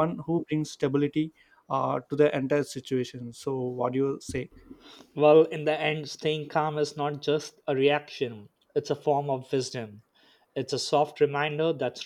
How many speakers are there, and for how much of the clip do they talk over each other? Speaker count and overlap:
two, no overlap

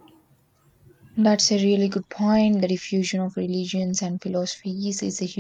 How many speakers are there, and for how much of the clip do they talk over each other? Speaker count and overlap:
one, no overlap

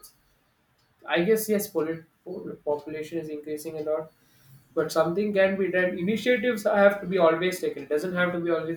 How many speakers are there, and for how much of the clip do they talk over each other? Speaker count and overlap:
one, no overlap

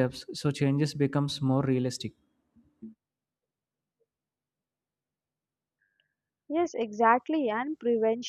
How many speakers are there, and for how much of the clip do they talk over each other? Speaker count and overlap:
two, no overlap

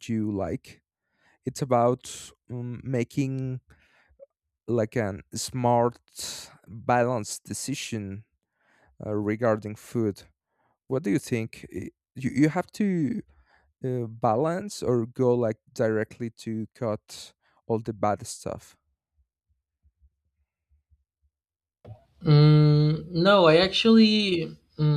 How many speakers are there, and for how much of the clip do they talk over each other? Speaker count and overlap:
two, no overlap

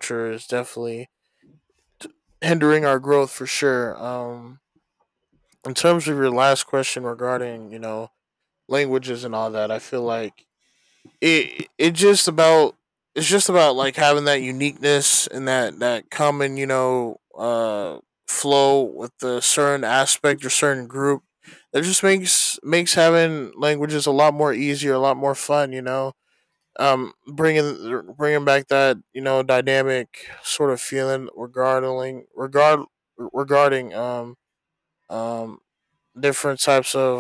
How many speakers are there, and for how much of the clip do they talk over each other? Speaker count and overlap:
one, no overlap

